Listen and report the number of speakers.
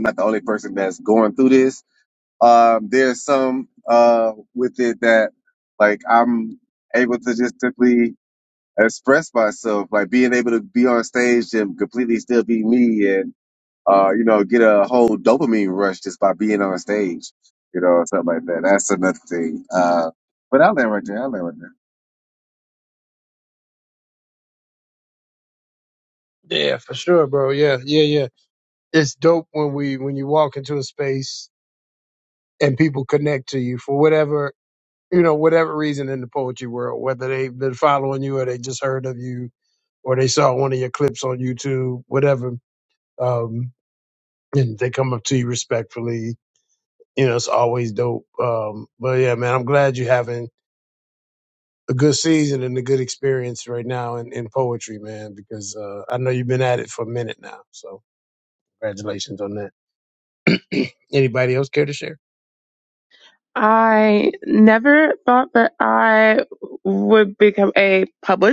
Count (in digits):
3